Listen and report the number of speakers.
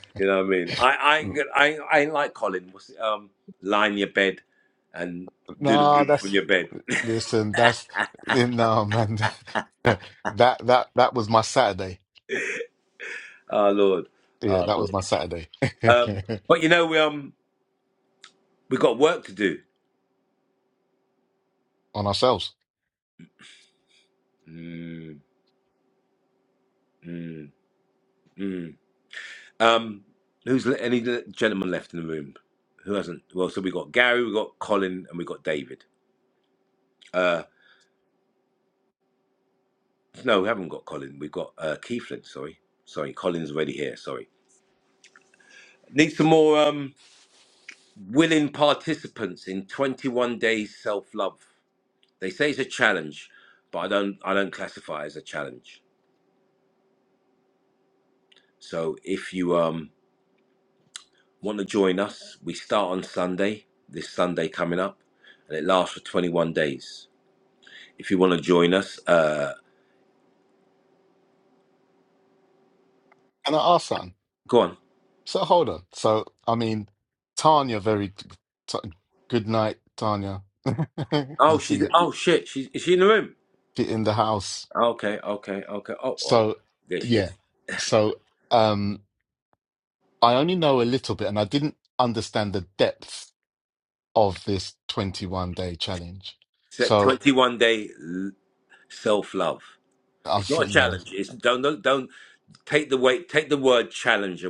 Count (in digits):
2